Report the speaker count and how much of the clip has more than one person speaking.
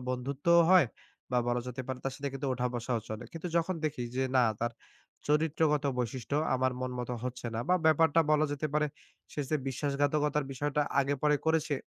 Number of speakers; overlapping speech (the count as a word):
one, no overlap